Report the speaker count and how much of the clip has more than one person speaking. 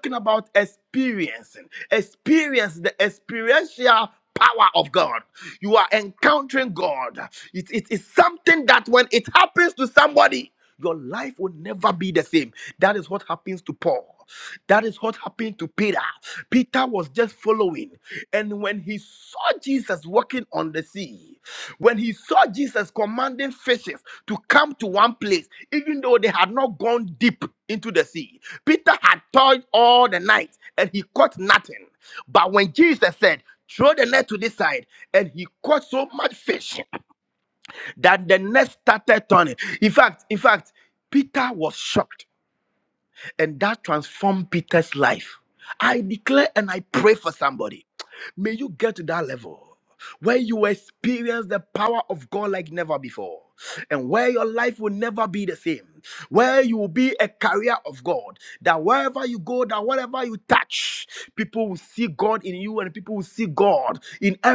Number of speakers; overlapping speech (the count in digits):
1, no overlap